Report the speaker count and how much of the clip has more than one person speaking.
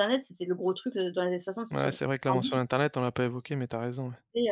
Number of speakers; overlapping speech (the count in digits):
2, about 16%